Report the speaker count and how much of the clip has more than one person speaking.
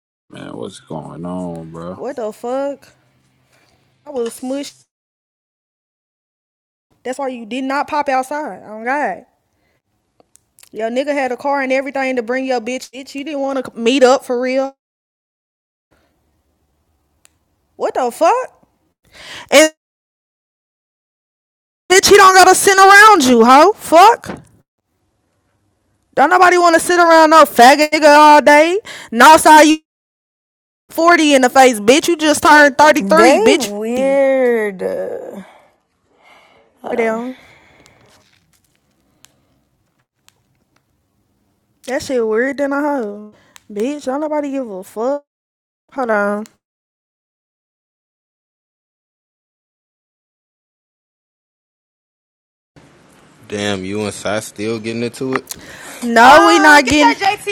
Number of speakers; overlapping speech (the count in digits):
4, about 4%